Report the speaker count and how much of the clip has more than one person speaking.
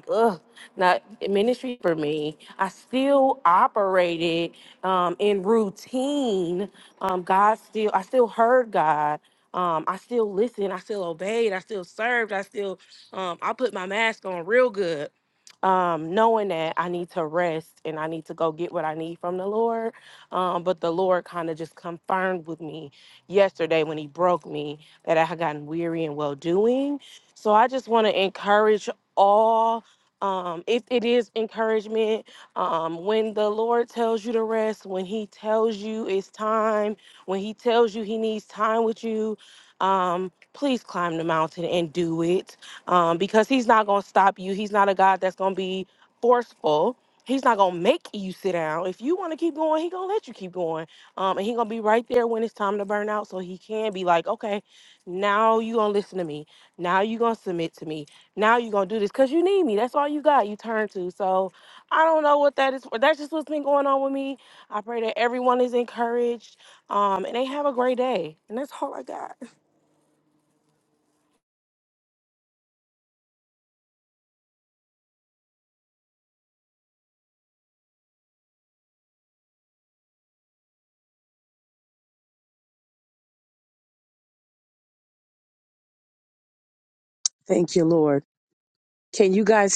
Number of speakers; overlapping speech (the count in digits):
2, no overlap